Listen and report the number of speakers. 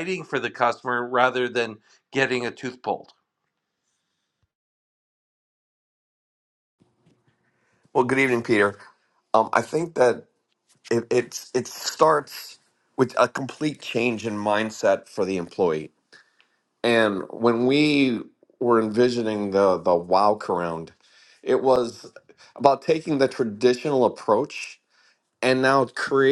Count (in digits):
2